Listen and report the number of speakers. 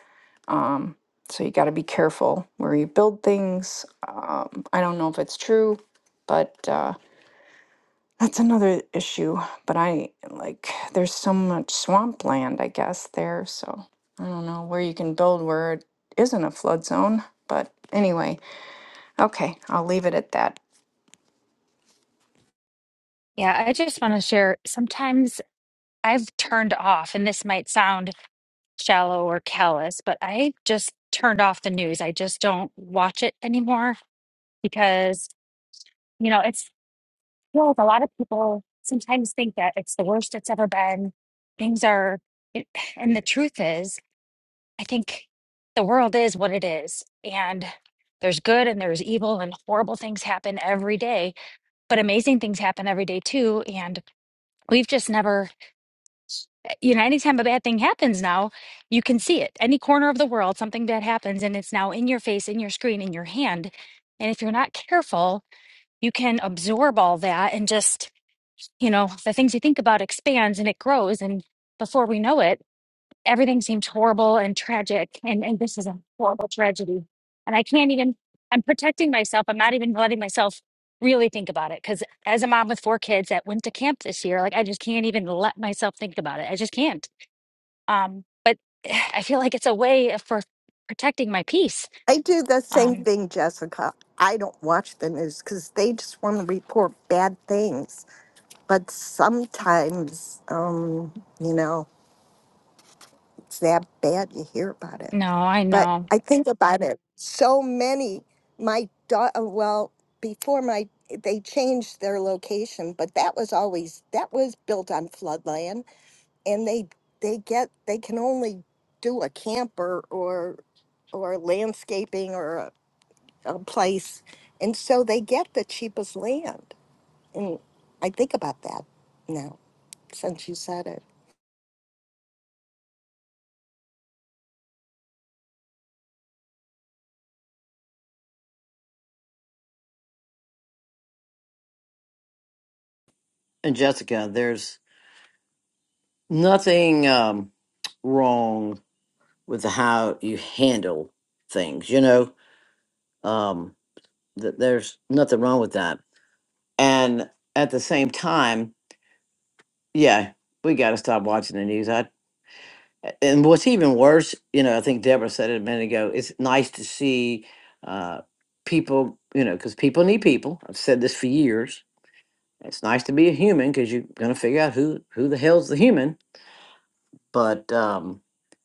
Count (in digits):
4